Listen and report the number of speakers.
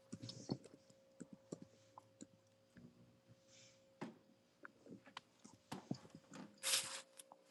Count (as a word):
zero